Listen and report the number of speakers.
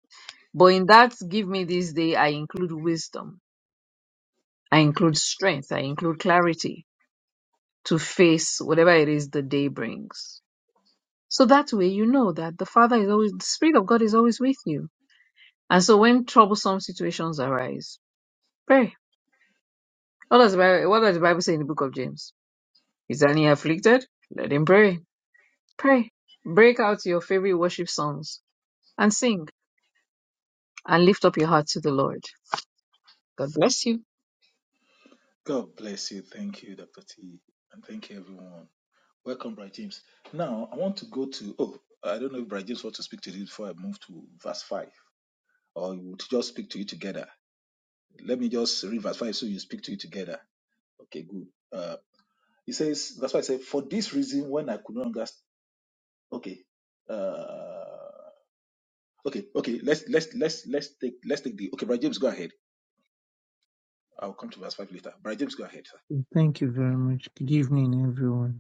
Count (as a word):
three